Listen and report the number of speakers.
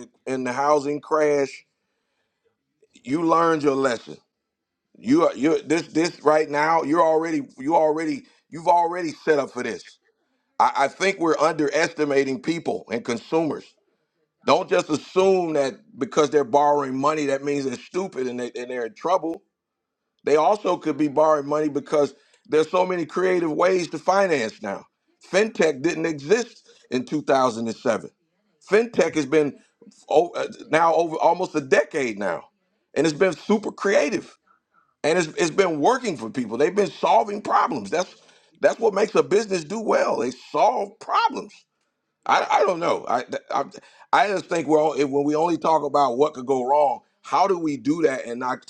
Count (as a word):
one